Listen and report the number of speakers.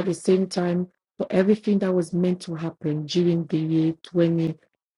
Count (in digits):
1